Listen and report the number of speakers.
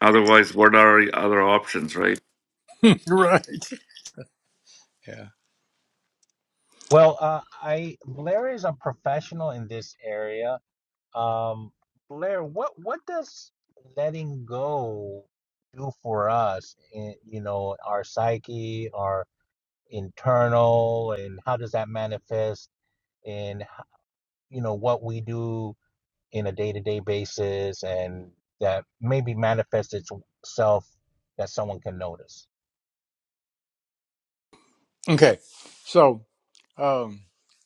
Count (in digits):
3